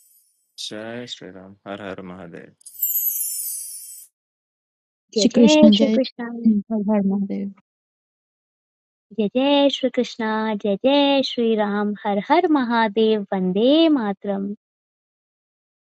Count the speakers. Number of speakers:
3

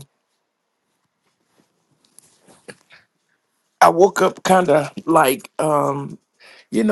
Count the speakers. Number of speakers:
1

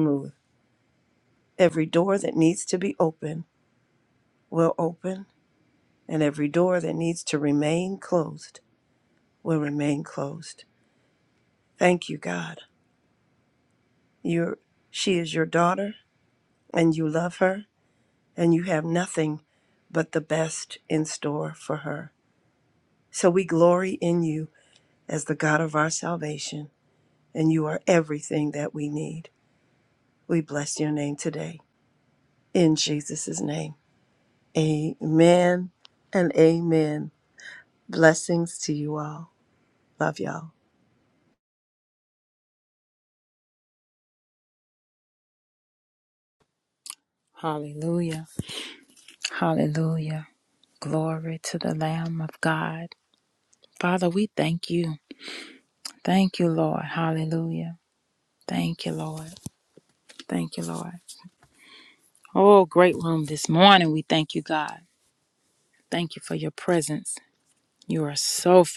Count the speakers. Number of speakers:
2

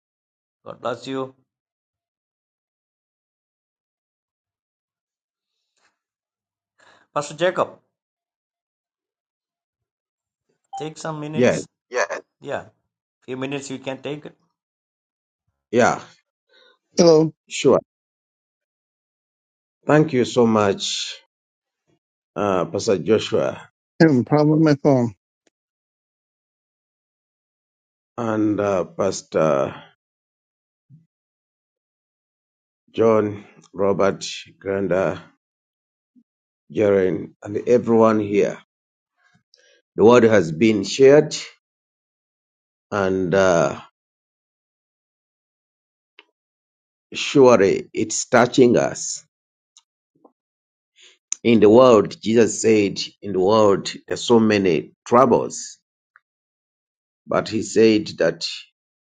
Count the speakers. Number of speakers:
3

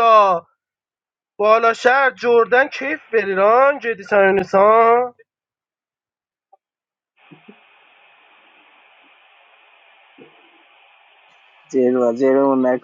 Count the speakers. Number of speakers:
2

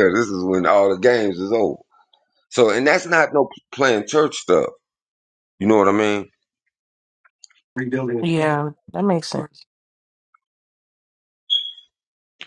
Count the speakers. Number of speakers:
2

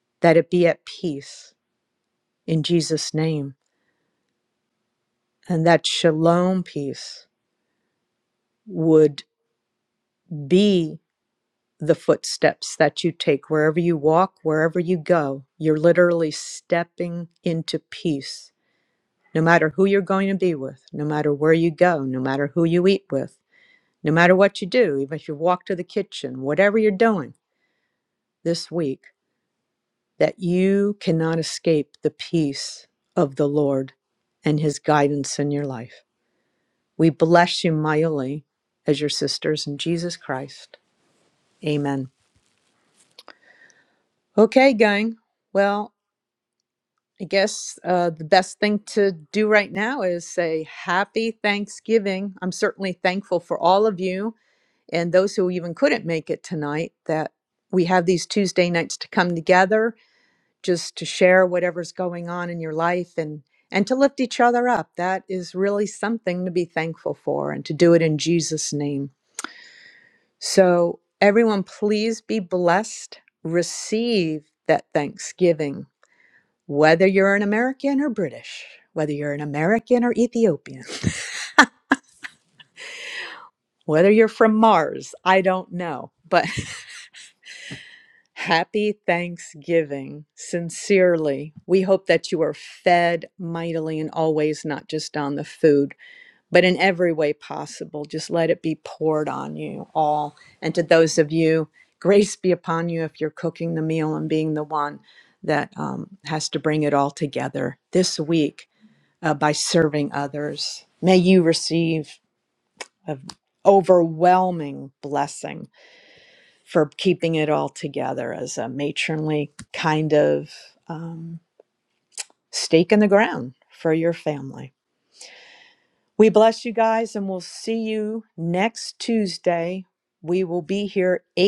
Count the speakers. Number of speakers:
1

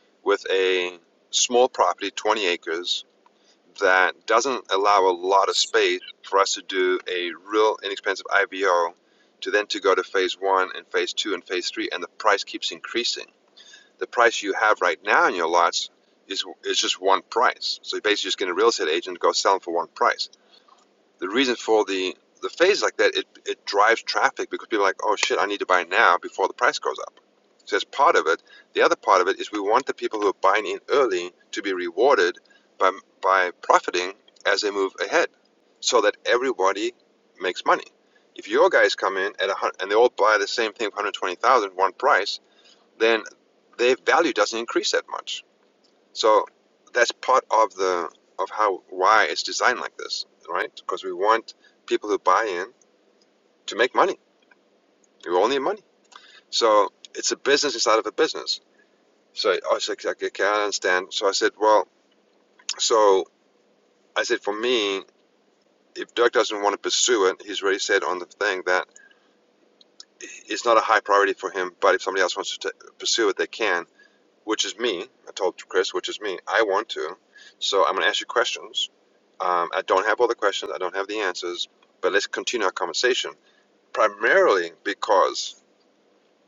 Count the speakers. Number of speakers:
1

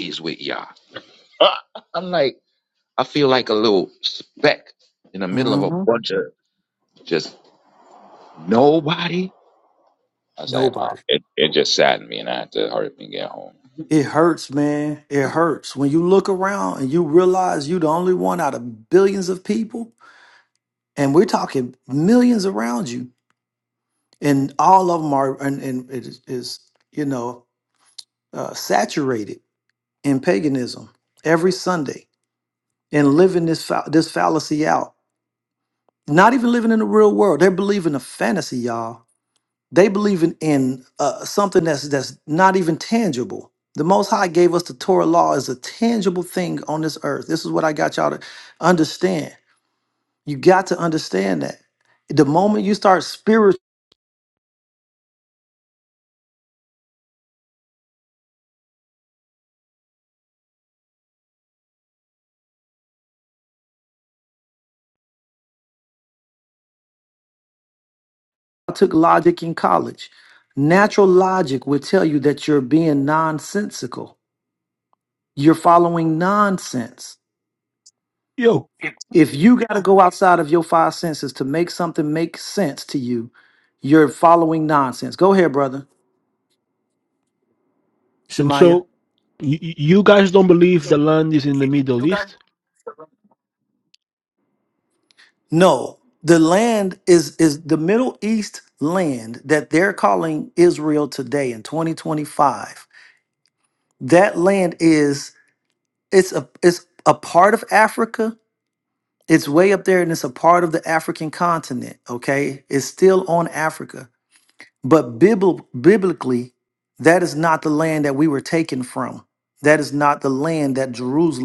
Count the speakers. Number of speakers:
3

